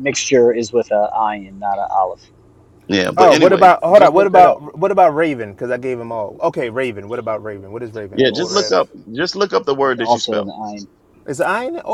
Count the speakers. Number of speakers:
three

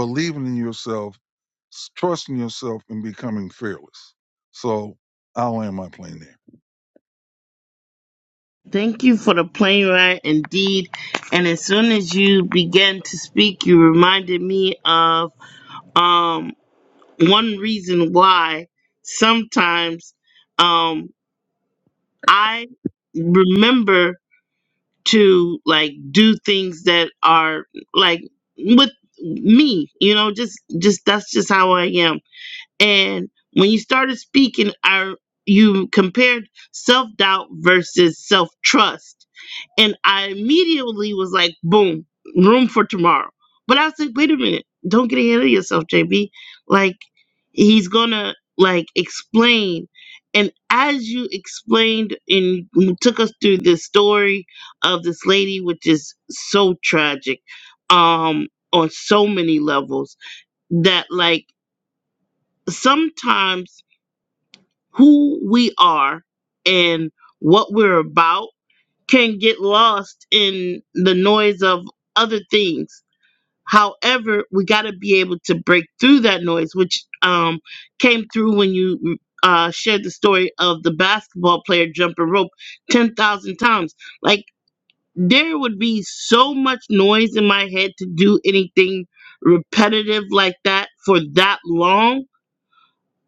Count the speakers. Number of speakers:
two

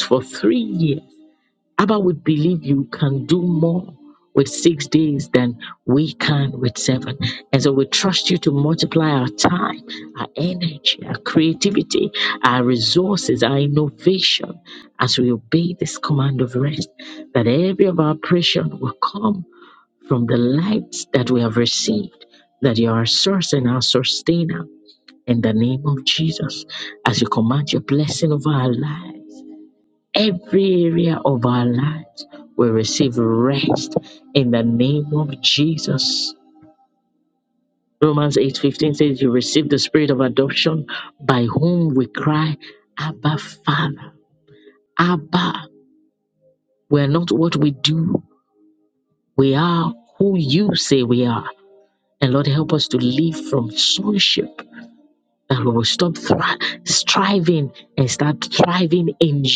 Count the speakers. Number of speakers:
one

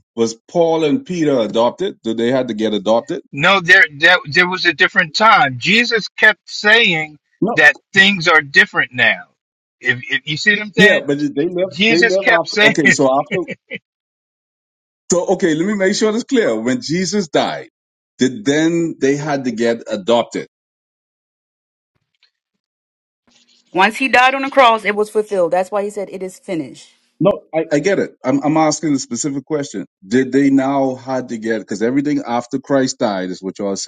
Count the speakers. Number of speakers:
three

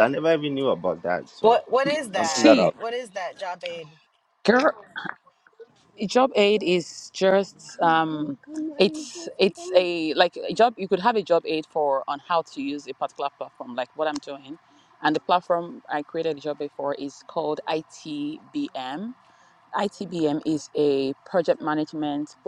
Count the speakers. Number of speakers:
three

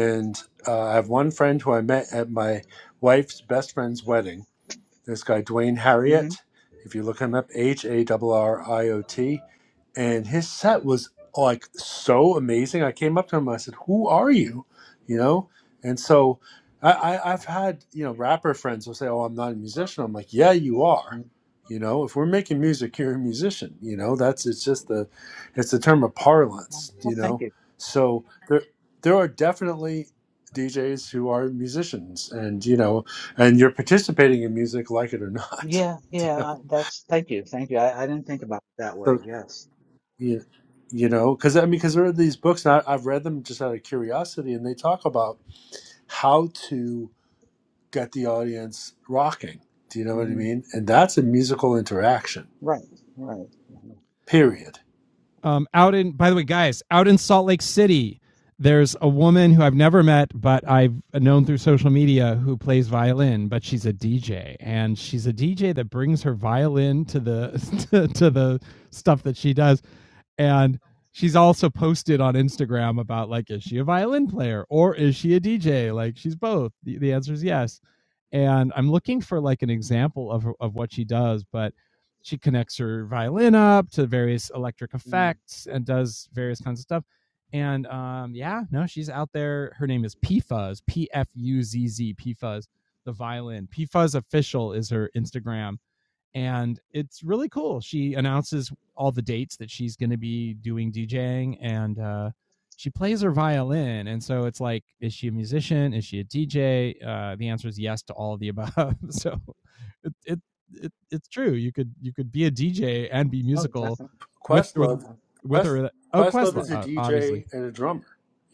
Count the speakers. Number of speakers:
three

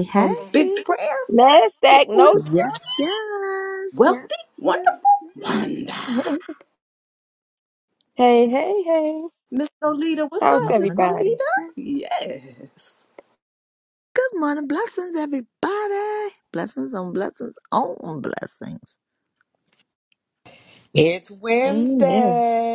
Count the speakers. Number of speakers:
four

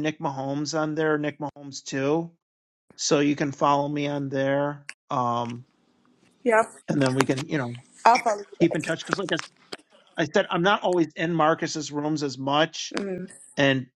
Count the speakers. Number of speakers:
two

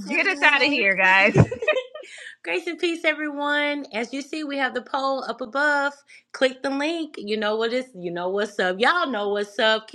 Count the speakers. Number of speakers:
two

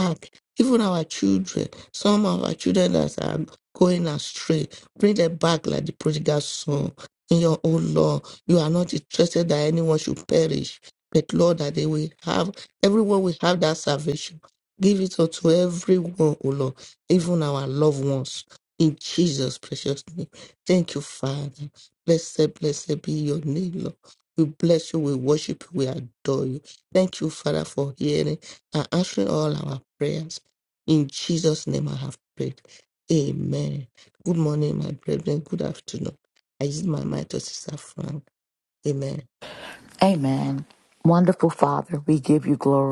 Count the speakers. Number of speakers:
two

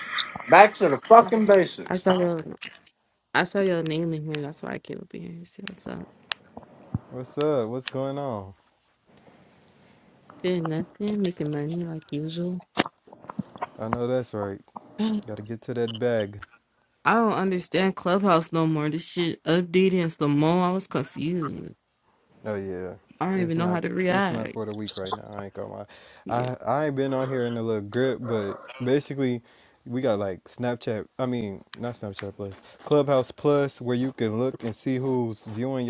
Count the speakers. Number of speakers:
three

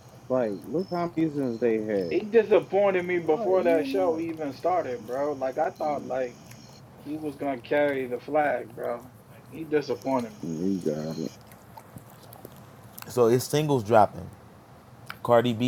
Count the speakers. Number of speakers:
three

